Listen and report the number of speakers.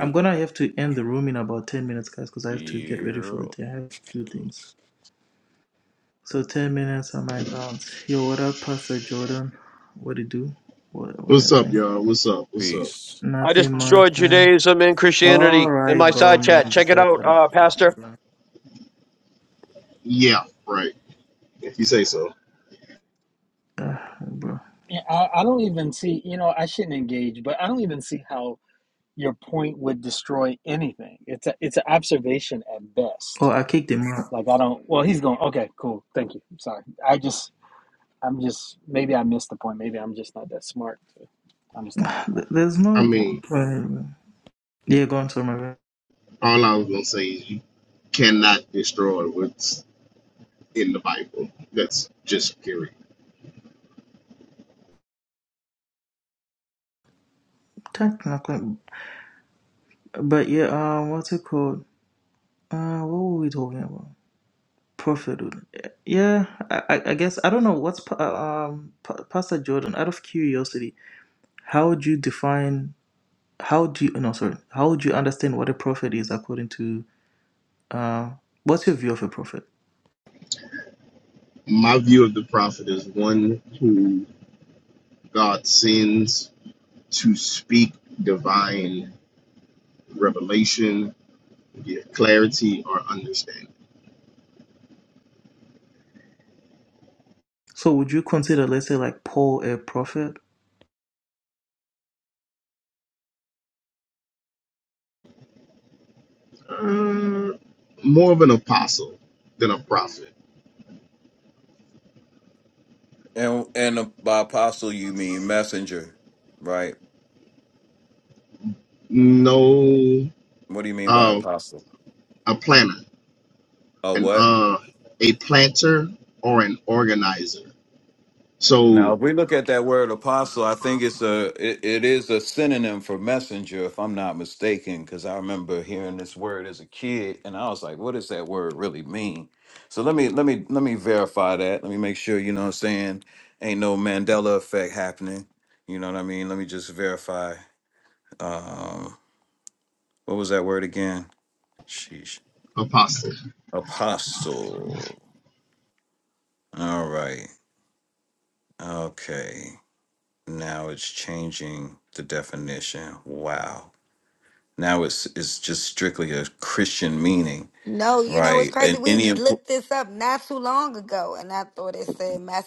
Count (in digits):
6